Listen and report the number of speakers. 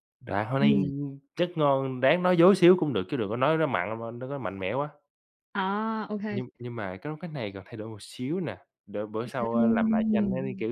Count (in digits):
2